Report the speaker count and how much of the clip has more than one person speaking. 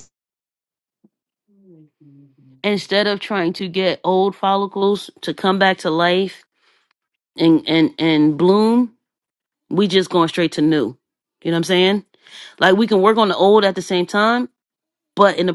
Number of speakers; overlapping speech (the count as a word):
one, no overlap